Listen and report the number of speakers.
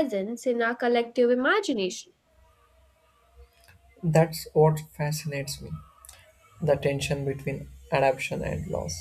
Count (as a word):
two